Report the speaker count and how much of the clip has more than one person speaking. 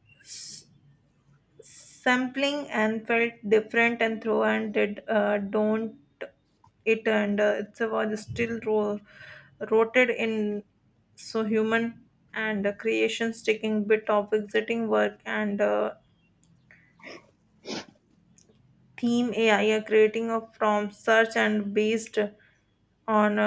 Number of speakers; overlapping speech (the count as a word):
one, no overlap